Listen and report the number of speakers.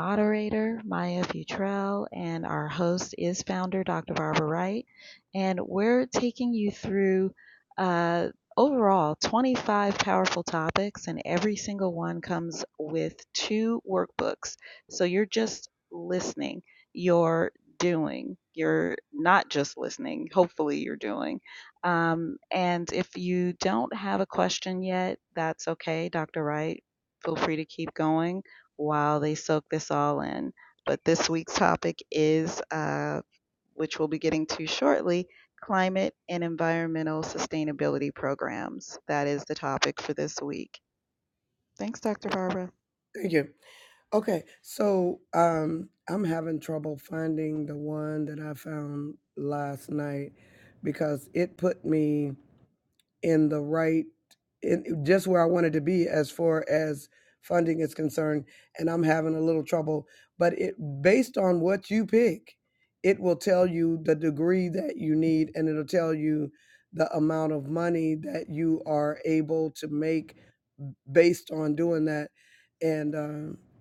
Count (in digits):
2